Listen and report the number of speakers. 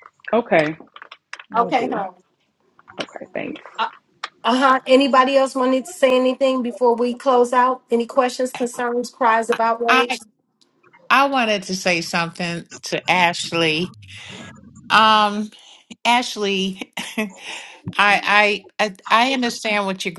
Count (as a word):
three